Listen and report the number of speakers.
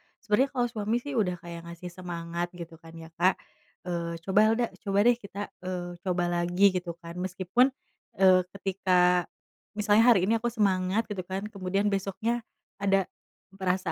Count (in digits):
1